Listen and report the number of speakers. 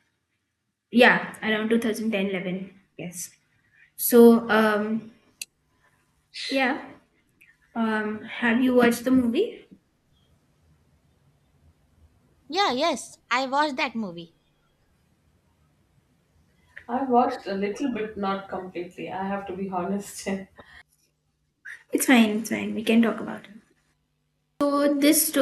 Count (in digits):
3